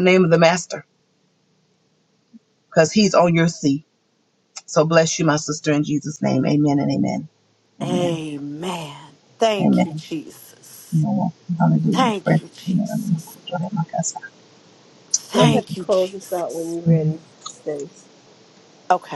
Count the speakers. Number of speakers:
3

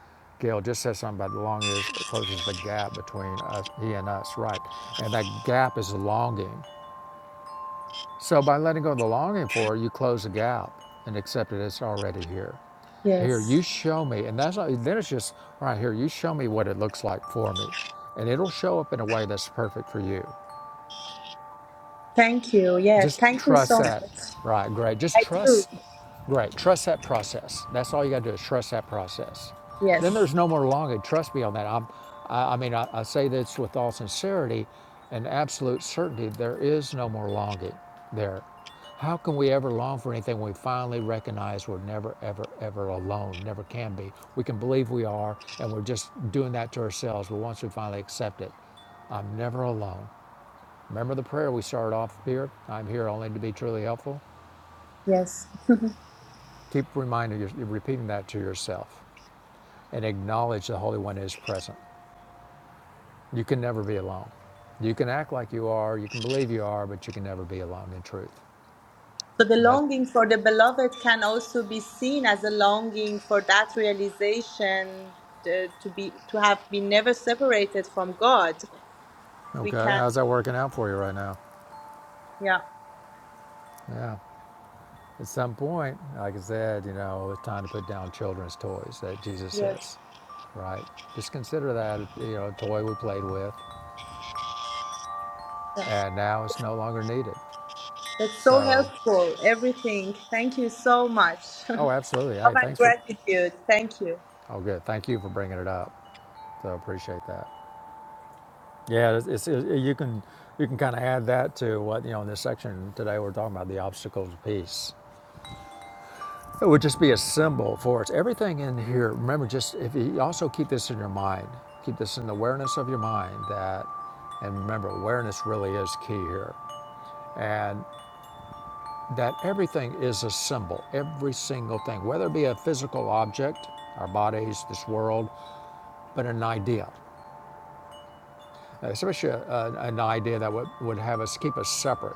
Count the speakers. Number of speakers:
2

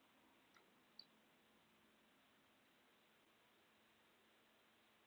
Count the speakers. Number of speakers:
0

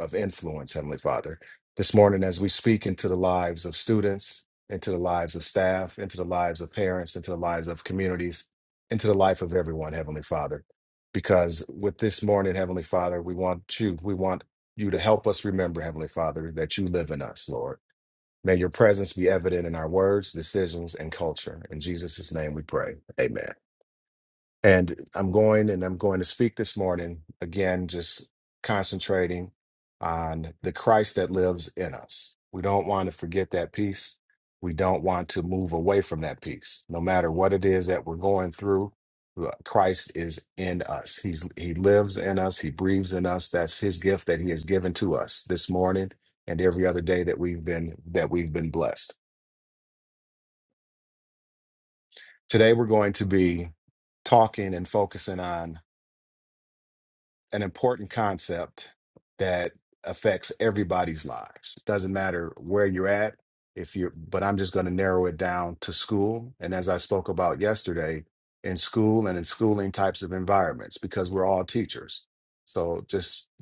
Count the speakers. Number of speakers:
1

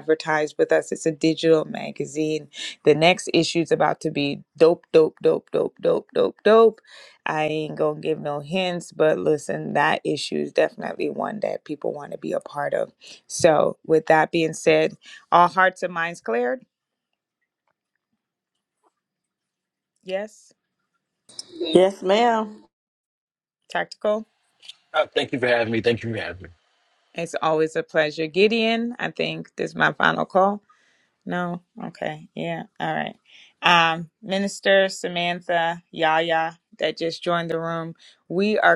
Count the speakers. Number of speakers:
3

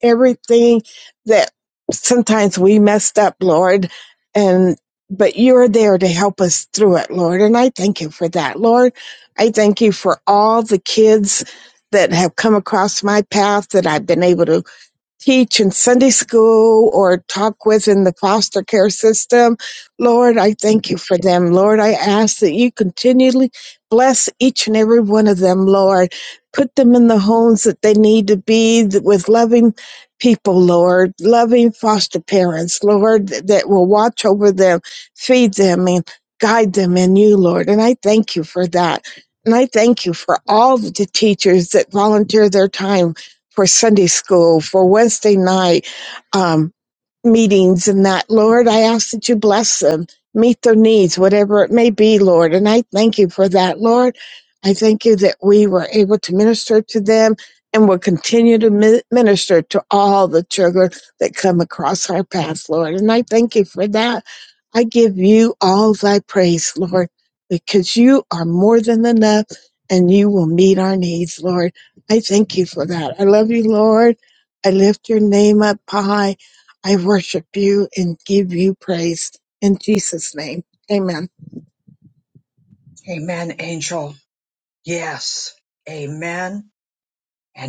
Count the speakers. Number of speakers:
2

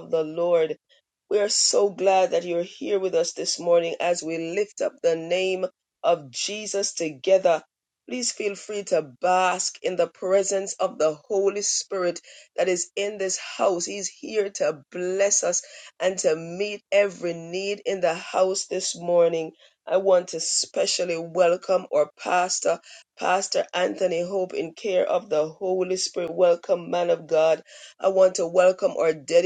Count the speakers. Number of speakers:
1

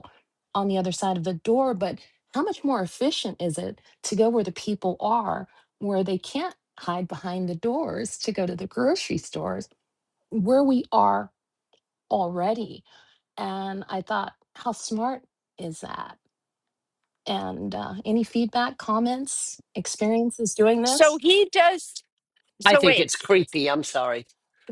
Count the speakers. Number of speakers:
3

